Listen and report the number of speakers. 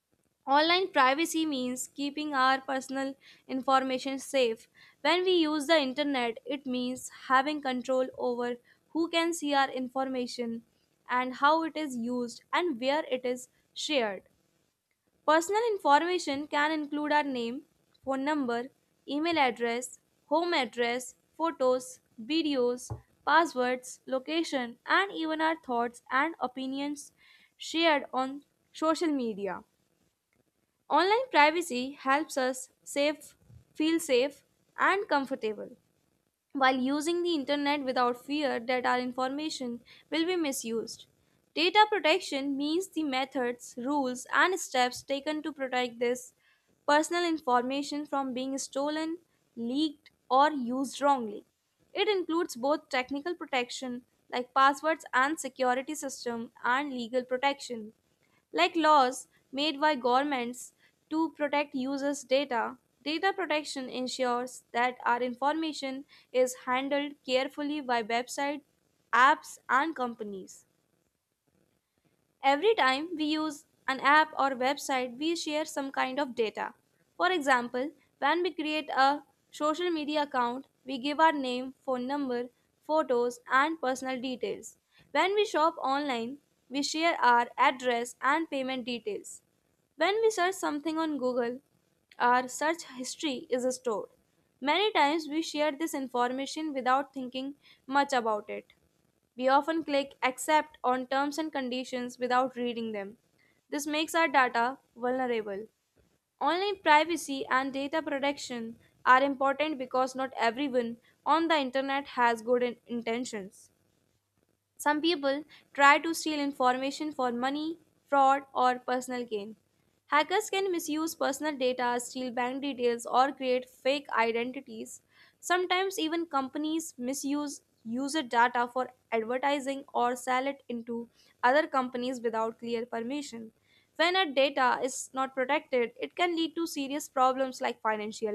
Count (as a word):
one